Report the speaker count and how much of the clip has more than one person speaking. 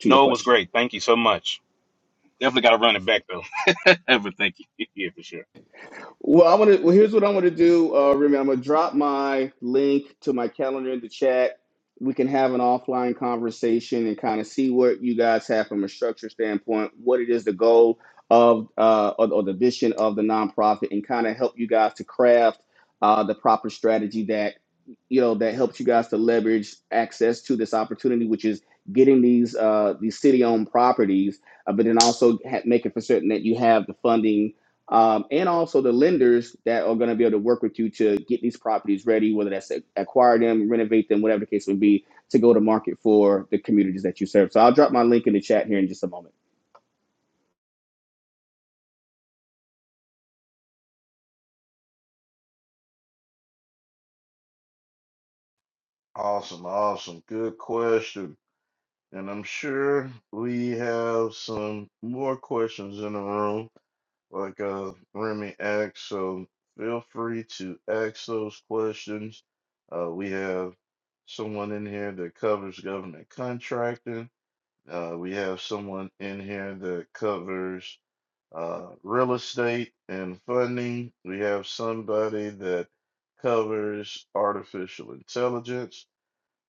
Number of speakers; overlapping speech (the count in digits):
3, about 1%